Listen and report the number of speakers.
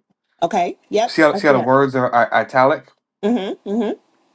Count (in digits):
2